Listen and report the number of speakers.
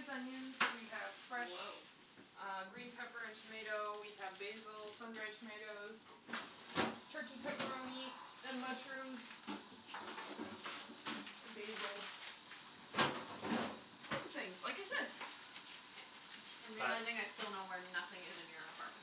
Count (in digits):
2